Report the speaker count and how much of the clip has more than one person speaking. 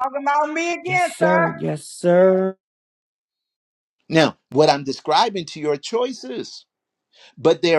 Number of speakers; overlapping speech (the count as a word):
three, about 9%